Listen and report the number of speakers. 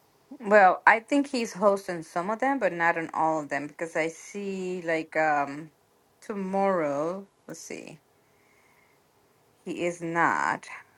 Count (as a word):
one